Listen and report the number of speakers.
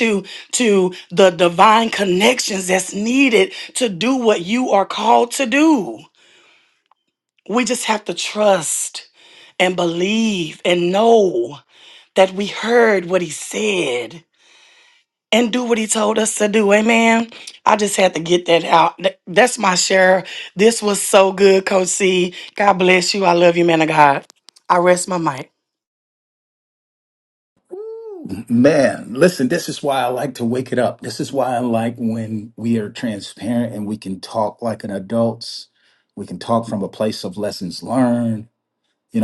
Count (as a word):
two